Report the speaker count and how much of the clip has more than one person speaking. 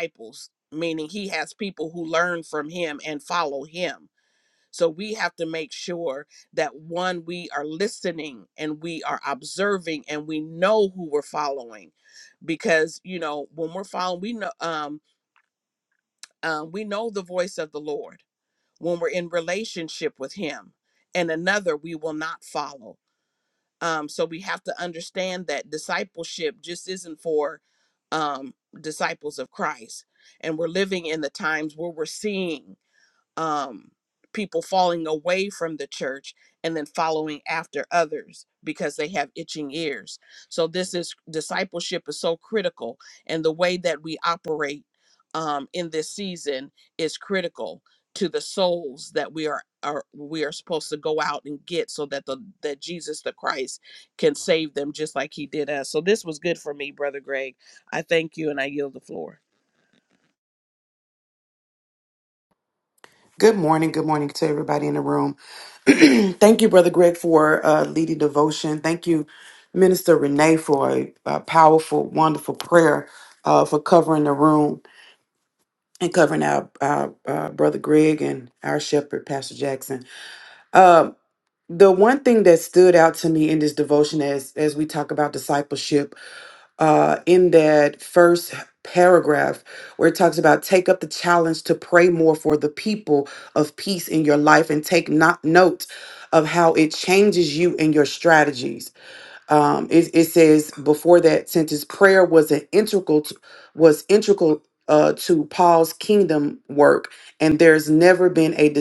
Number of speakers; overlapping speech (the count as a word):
two, no overlap